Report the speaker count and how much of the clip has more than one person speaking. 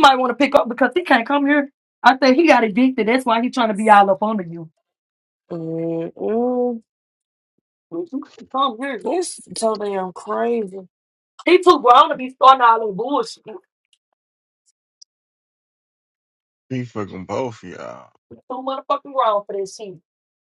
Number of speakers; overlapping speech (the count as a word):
three, no overlap